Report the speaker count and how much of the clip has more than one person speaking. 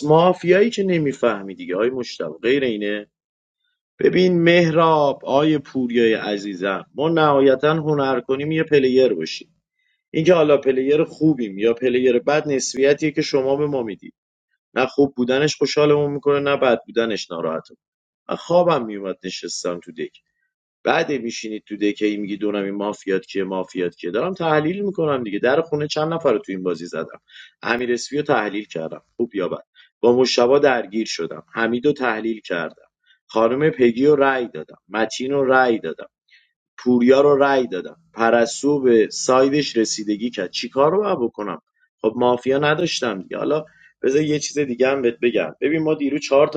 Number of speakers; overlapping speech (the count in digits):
1, no overlap